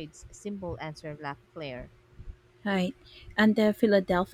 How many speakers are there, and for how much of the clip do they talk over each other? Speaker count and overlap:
two, no overlap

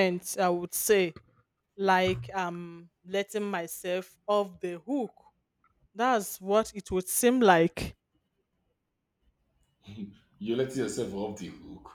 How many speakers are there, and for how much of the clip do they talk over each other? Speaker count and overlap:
two, no overlap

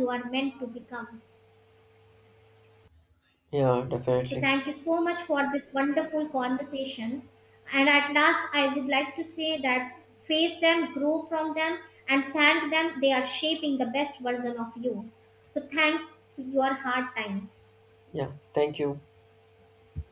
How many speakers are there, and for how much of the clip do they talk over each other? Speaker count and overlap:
two, about 1%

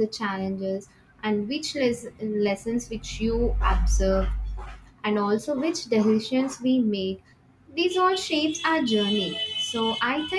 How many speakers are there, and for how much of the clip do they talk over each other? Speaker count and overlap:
one, no overlap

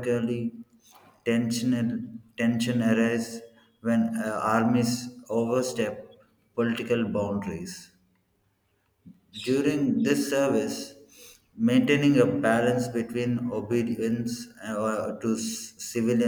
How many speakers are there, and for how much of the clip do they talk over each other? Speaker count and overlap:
one, no overlap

